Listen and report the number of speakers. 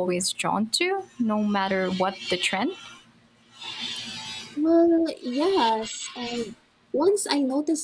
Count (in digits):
2